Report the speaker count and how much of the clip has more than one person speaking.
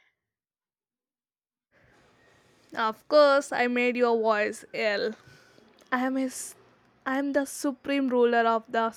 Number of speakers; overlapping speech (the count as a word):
one, no overlap